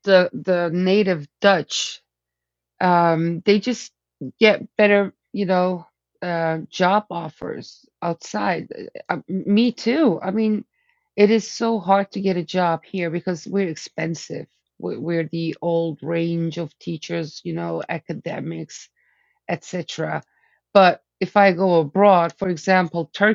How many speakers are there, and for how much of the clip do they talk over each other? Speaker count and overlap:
one, no overlap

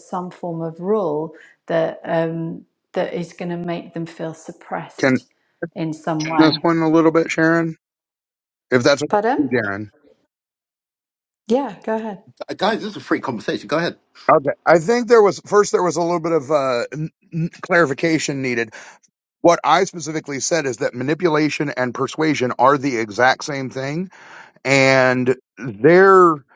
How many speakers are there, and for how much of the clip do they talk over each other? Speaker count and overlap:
three, about 2%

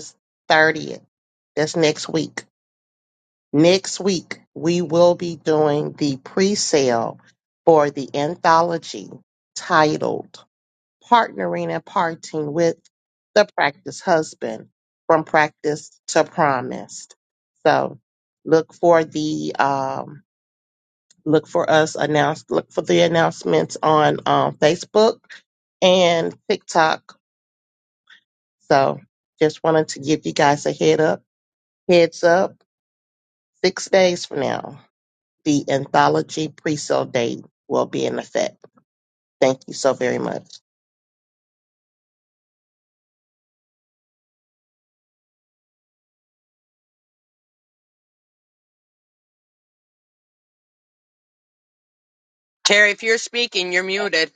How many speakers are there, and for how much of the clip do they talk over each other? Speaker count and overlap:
two, no overlap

